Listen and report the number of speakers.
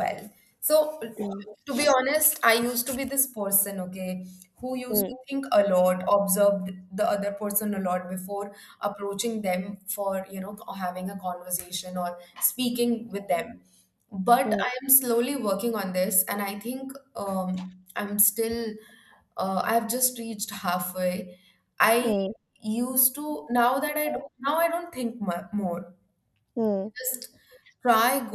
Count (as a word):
two